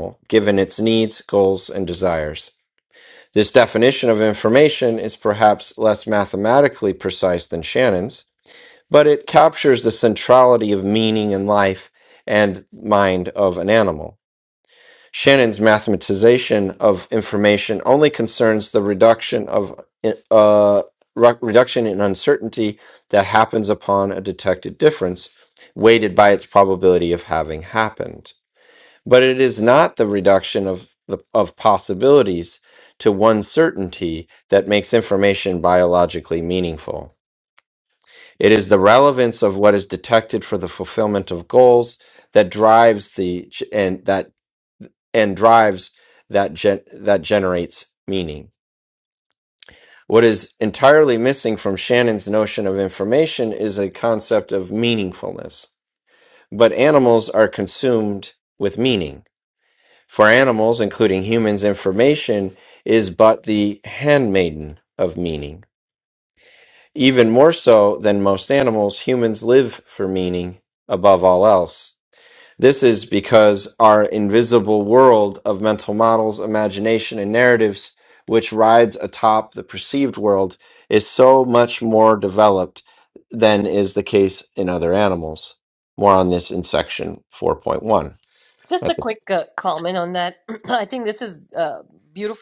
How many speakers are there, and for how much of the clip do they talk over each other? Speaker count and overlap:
2, no overlap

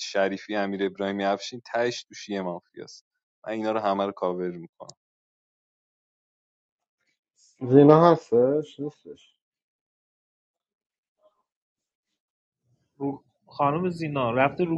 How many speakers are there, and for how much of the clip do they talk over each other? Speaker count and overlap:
3, no overlap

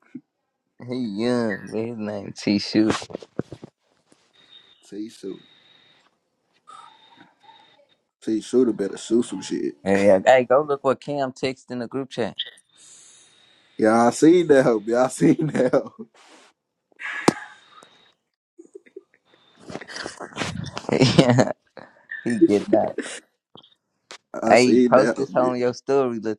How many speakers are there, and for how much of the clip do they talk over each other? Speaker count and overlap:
2, about 4%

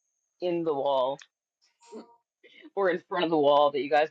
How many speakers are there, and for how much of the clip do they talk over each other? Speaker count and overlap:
1, no overlap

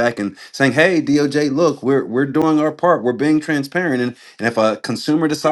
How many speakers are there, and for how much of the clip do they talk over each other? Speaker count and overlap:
1, no overlap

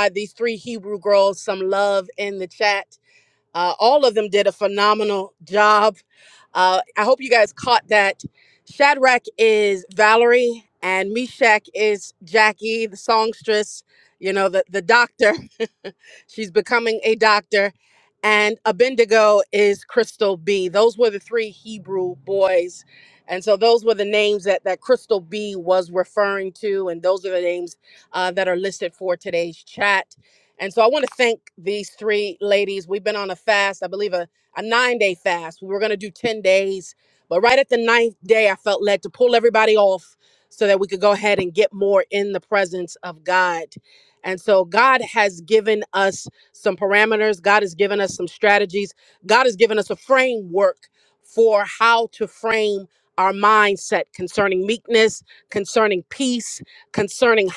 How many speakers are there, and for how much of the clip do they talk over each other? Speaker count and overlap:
1, no overlap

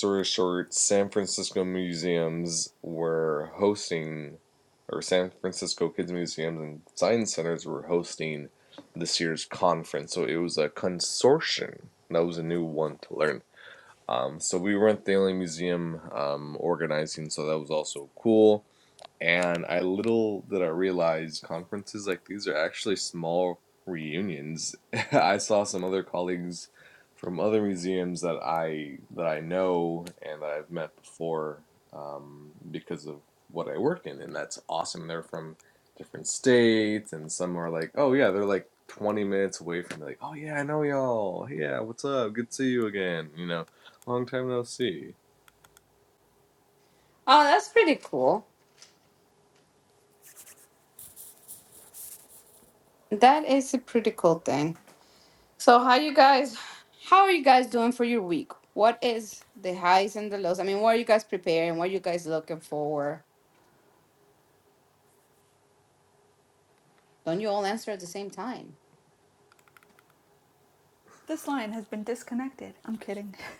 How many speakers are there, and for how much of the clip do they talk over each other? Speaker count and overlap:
3, no overlap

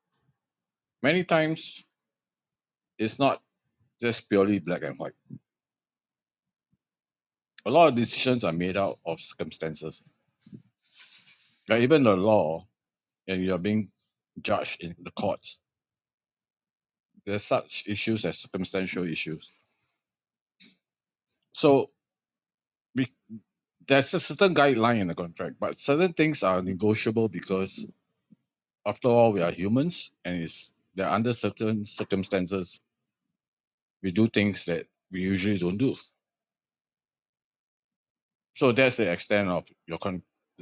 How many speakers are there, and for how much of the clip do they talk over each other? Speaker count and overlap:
1, no overlap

